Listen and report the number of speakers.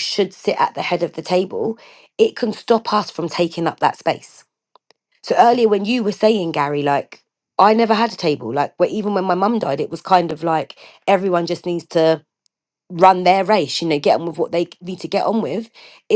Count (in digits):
1